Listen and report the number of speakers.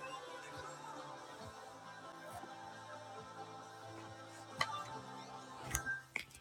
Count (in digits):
0